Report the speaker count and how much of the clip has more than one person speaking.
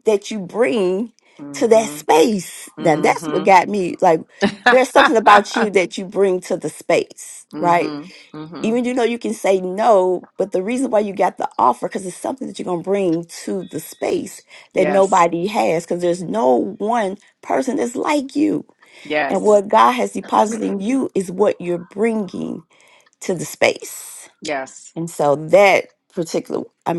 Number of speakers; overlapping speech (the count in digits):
2, about 9%